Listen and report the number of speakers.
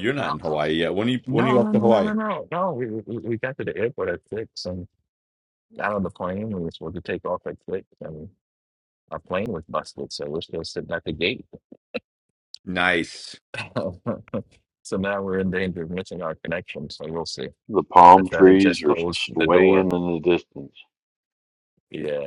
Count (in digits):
3